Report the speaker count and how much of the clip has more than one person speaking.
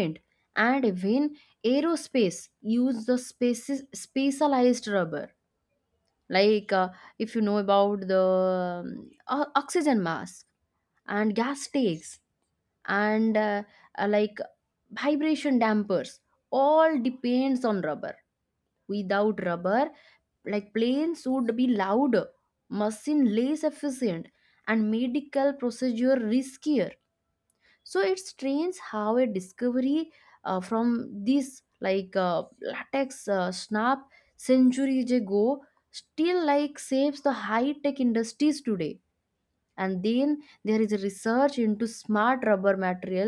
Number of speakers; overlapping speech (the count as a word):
one, no overlap